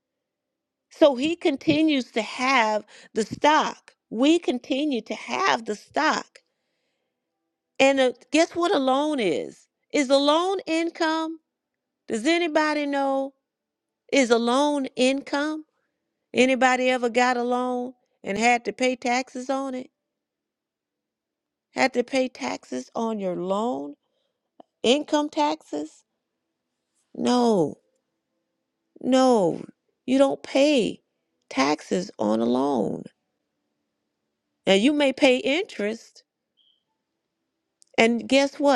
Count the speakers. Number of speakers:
1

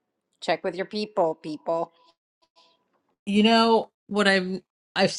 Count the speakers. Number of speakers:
2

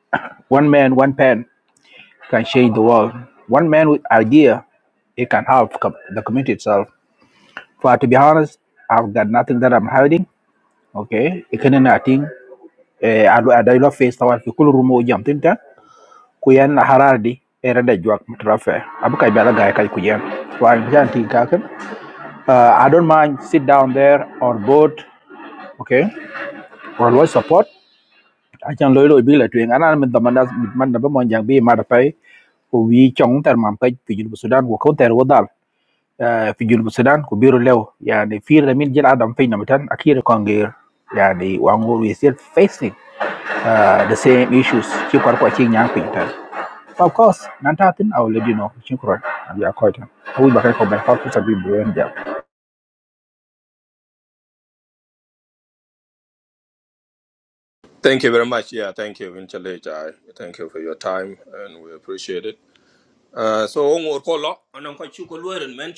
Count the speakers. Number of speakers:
2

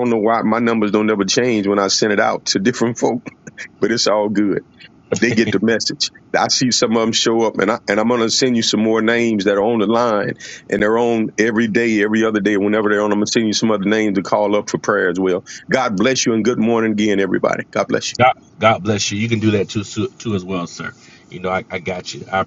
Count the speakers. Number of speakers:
2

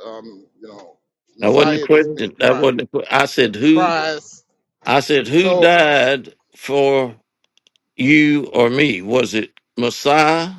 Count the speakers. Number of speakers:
2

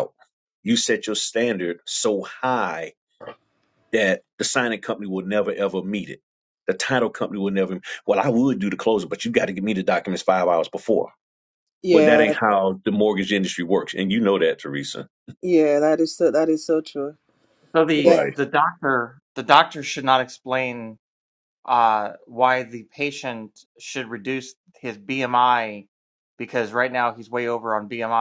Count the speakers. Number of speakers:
3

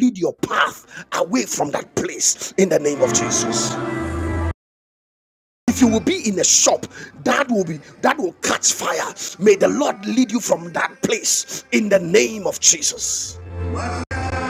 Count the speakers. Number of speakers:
1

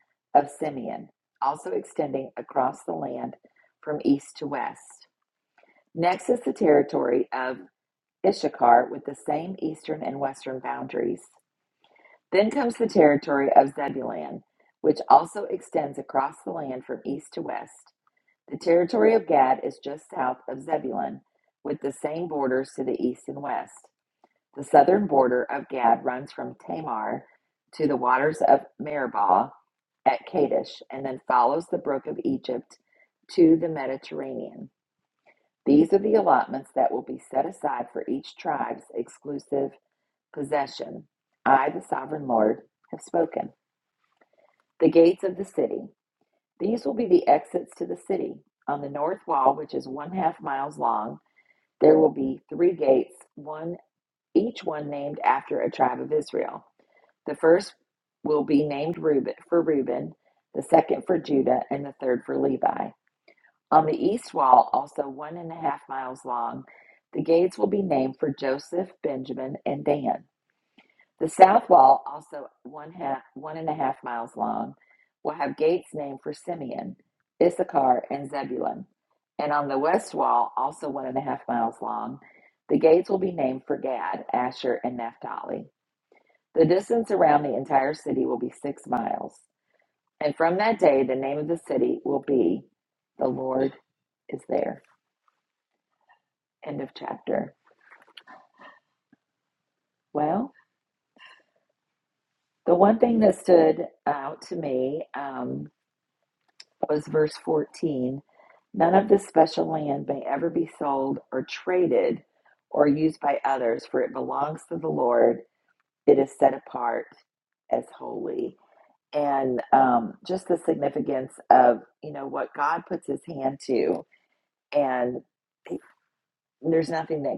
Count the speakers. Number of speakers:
1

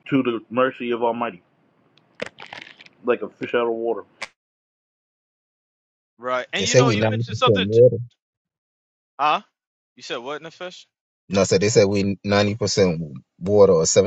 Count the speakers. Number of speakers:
3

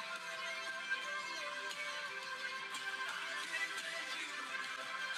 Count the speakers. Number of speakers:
0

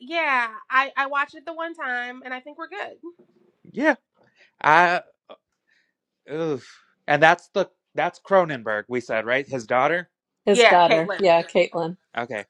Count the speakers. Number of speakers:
3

